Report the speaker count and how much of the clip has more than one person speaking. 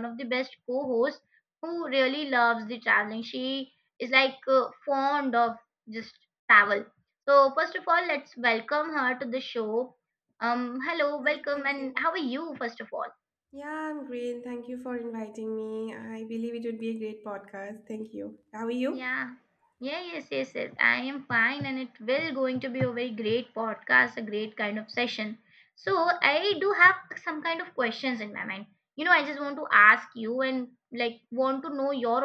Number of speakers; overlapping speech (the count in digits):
2, about 3%